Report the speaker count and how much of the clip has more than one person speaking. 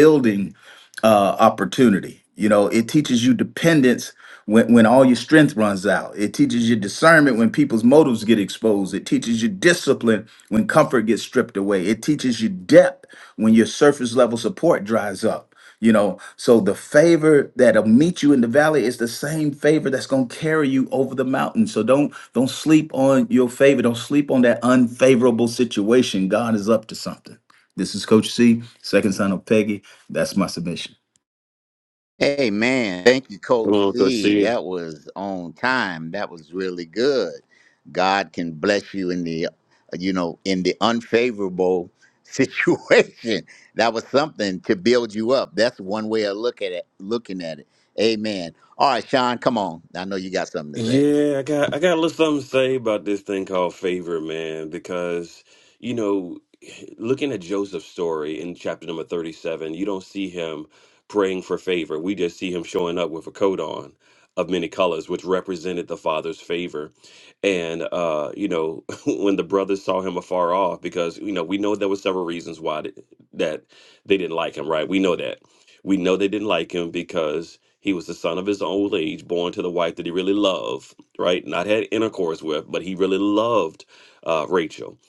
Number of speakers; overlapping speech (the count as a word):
three, about 1%